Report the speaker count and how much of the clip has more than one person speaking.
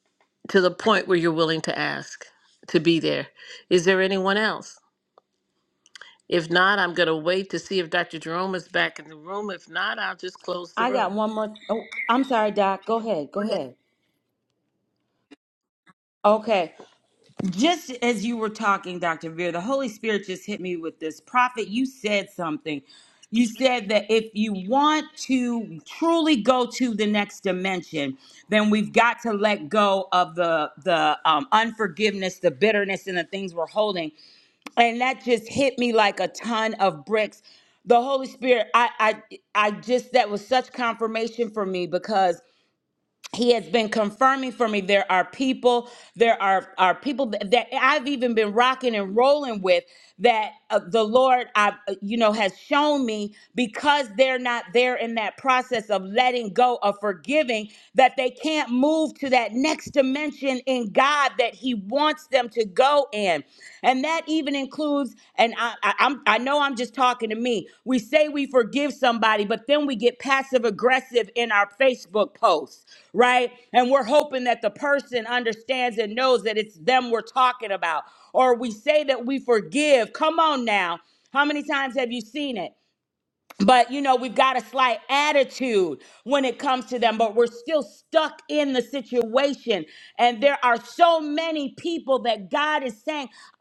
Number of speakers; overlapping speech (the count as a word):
two, under 1%